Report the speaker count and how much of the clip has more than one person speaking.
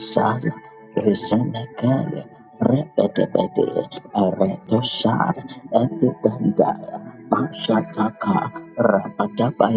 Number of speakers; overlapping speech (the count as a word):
one, no overlap